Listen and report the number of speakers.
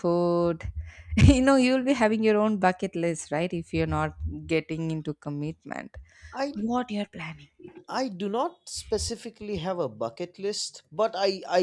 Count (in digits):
2